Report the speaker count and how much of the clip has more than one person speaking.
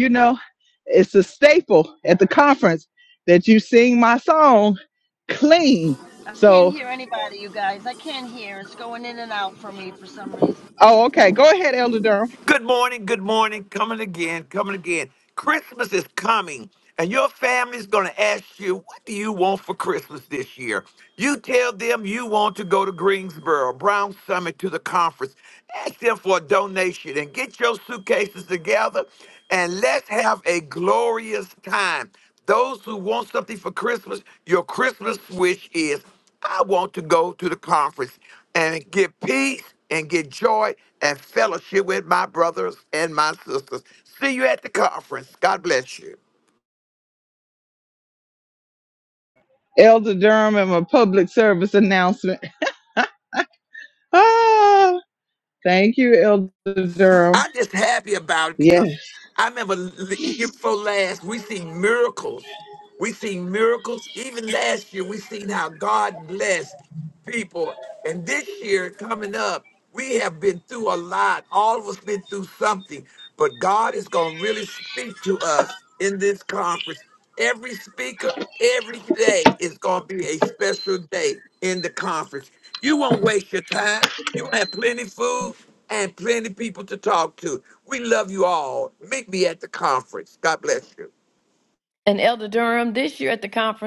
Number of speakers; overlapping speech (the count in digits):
4, about 1%